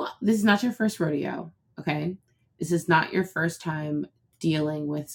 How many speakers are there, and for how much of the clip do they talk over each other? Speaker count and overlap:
1, no overlap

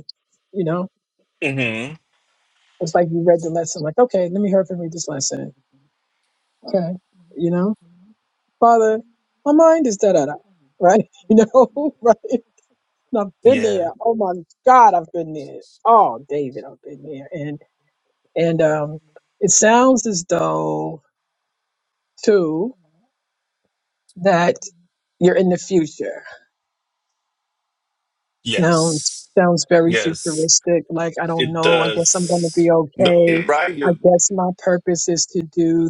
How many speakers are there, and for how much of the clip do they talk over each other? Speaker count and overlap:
2, about 8%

